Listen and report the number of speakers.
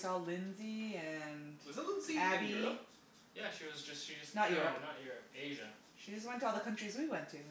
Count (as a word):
three